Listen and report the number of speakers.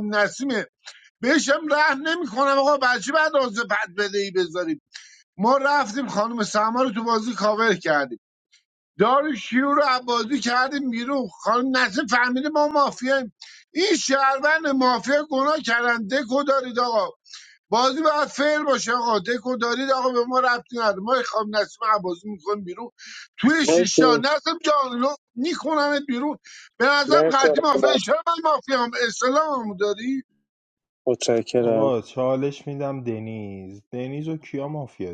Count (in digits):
3